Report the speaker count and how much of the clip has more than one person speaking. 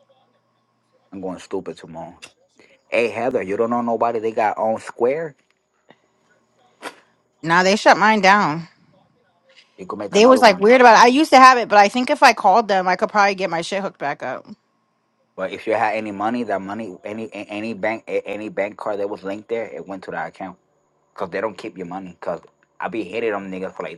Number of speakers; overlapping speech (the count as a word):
two, about 2%